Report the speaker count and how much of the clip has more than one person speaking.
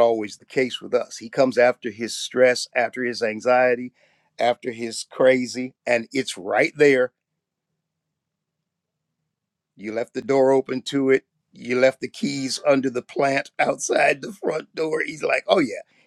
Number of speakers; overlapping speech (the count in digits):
1, no overlap